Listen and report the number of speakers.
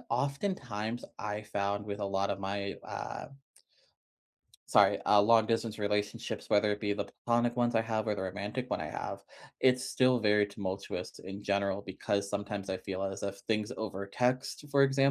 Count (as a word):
one